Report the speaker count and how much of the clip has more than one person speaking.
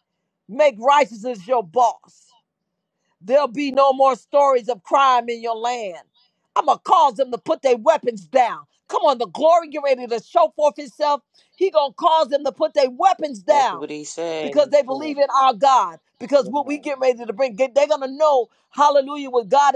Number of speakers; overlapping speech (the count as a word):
two, about 7%